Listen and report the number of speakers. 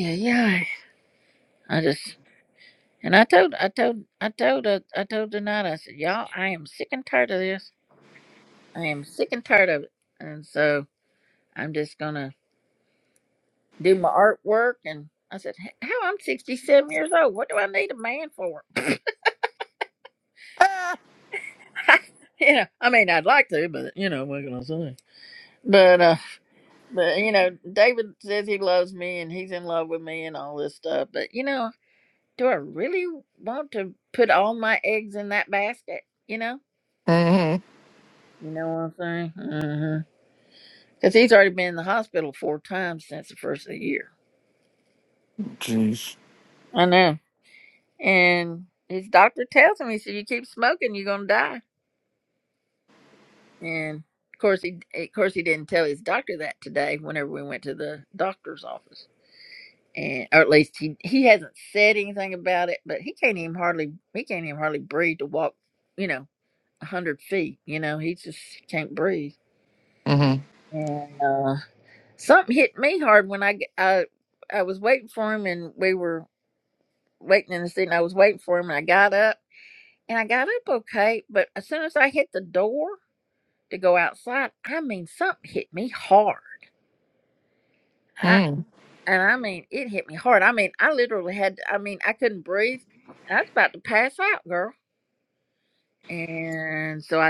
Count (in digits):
2